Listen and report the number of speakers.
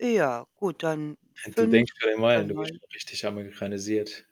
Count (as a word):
two